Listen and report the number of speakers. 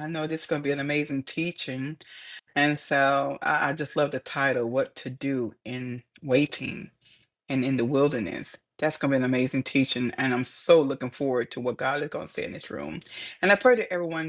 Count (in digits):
1